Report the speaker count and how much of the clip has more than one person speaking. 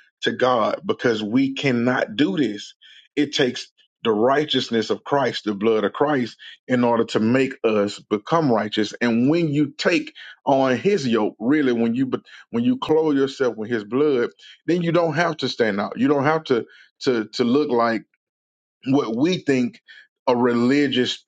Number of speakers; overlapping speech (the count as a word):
one, no overlap